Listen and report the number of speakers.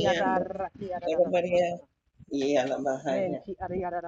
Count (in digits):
2